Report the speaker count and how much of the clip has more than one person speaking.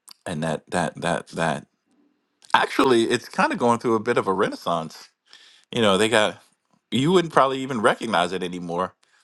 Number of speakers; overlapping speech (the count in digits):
1, no overlap